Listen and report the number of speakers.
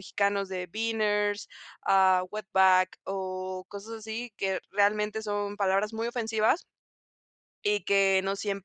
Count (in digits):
1